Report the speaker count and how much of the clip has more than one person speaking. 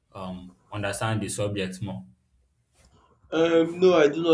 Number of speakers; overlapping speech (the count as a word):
two, no overlap